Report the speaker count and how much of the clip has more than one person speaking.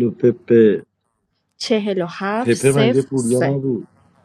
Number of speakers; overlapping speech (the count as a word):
two, about 17%